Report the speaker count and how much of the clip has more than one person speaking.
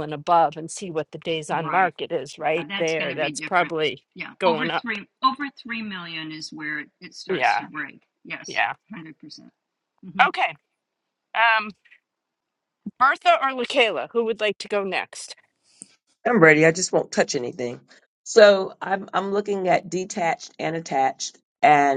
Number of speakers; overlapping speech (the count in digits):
3, about 12%